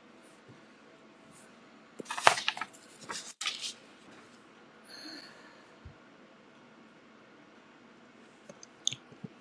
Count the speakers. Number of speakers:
0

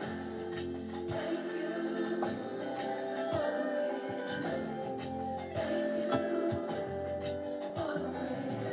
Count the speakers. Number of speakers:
0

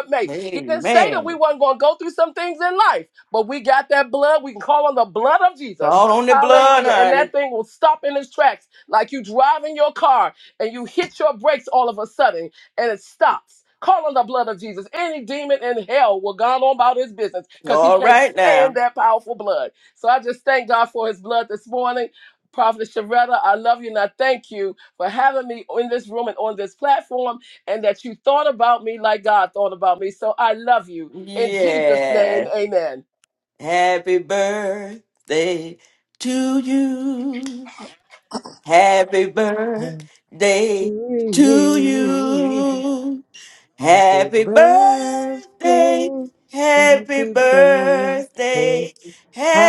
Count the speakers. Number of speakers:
3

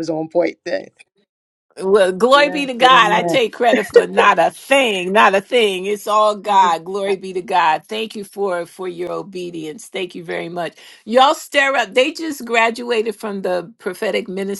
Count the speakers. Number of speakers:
2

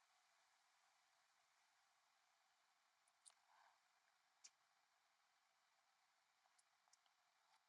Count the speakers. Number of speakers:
0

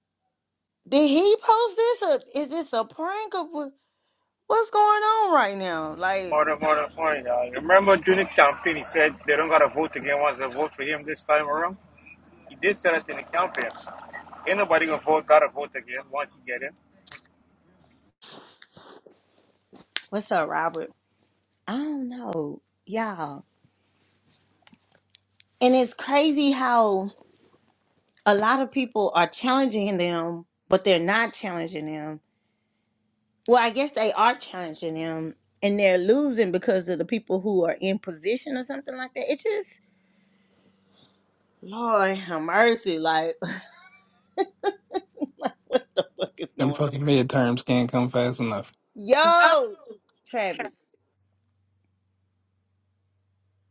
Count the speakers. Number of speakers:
3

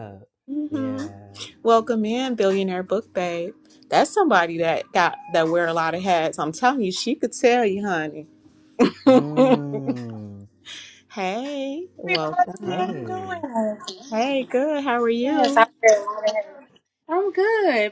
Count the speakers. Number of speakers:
3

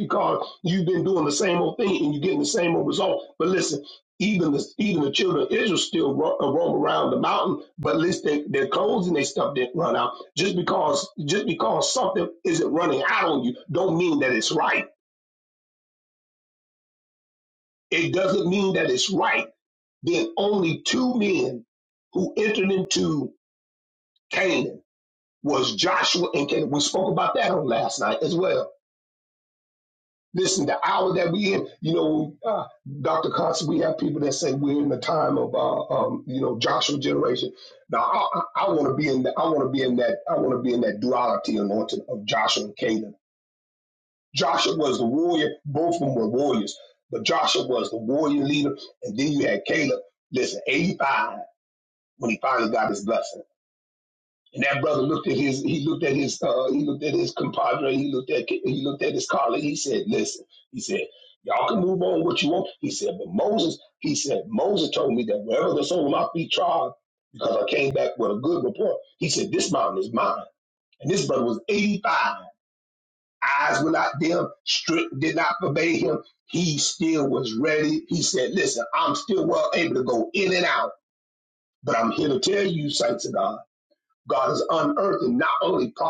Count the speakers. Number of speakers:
1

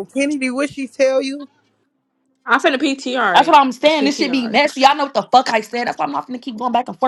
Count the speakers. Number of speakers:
3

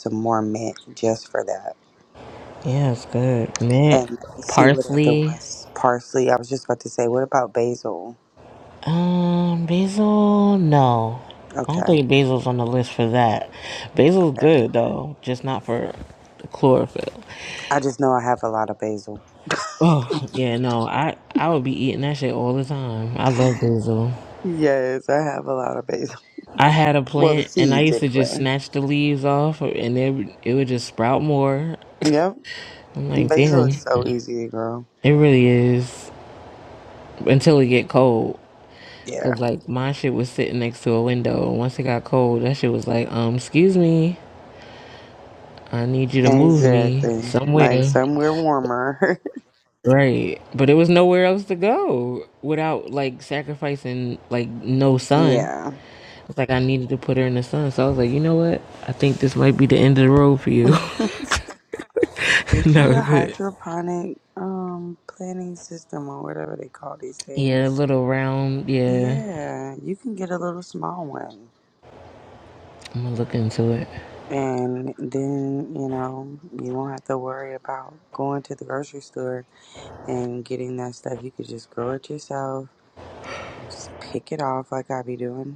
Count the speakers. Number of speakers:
2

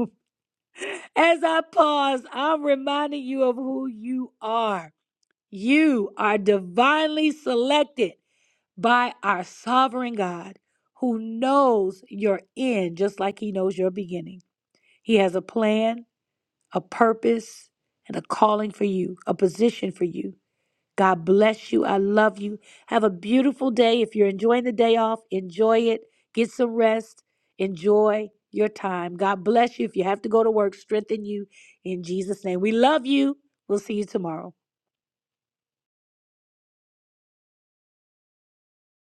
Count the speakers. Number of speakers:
1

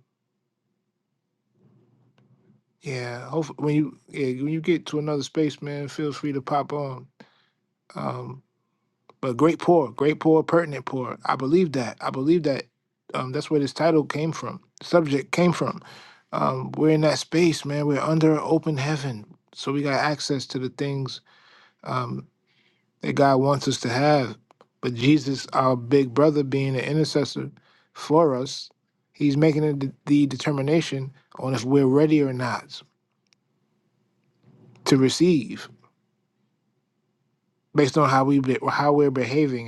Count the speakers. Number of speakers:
1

